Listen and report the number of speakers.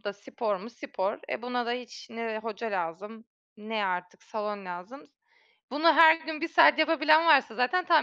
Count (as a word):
one